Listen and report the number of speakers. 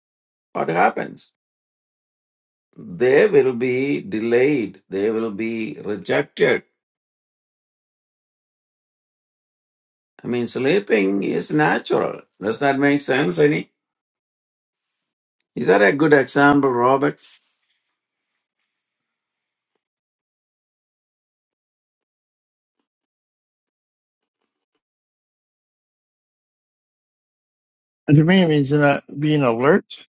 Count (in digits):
2